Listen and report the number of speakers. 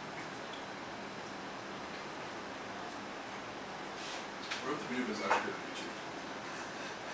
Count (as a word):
one